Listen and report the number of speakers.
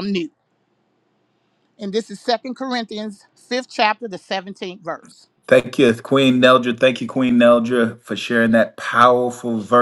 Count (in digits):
2